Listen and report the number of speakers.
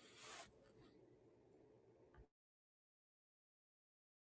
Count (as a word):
zero